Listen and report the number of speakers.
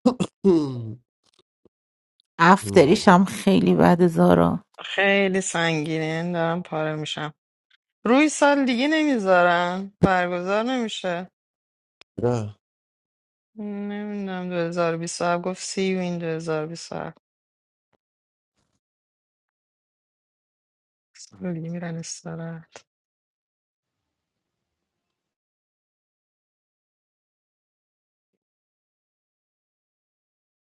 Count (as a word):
three